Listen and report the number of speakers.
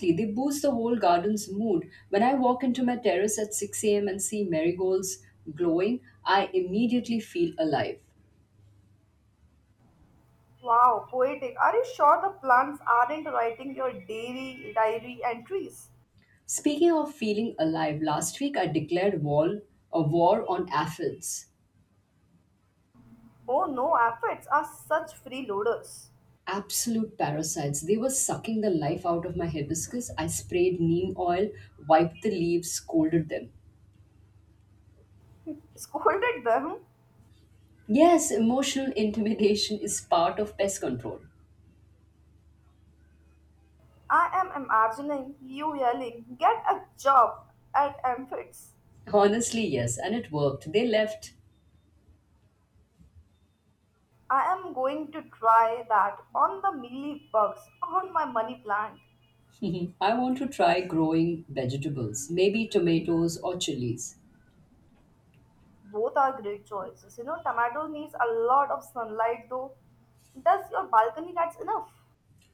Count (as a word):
two